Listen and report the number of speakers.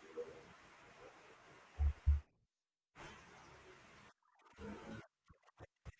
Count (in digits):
0